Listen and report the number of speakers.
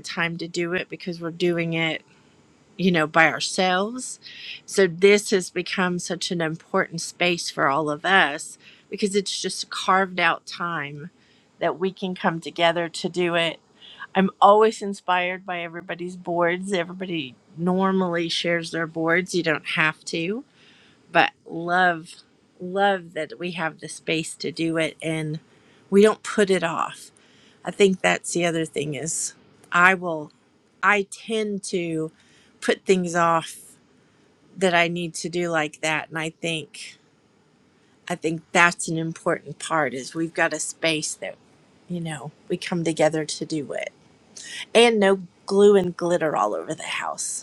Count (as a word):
one